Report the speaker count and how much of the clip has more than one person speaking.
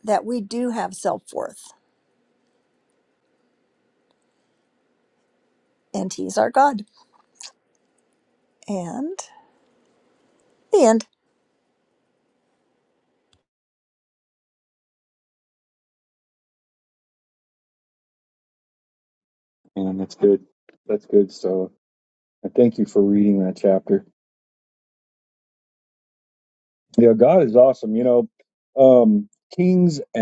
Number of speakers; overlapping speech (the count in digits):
2, no overlap